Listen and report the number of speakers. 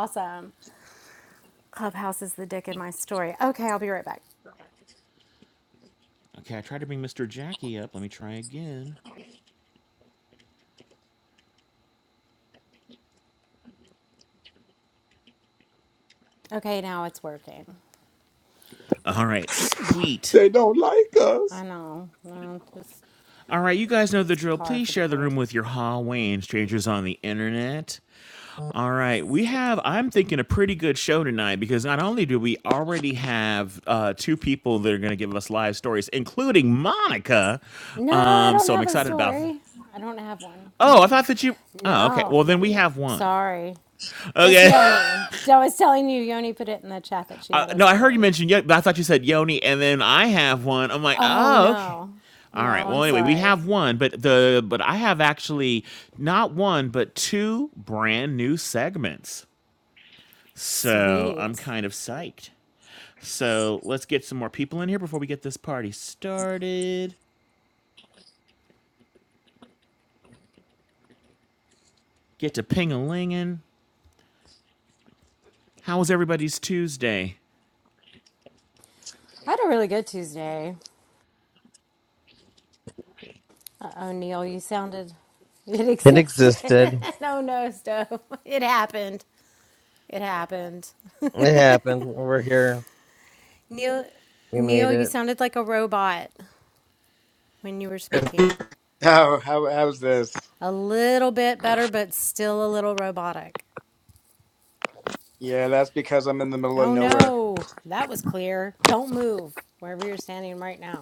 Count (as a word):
five